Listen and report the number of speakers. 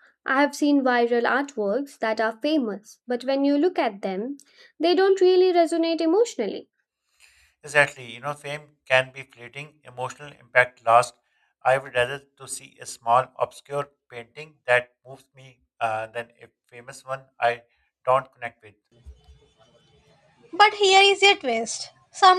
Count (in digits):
3